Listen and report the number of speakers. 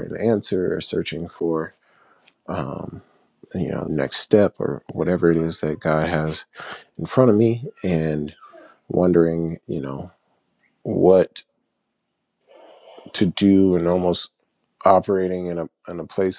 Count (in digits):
1